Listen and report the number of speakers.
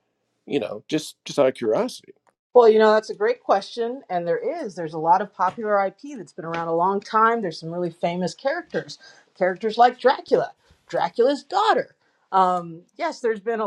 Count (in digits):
2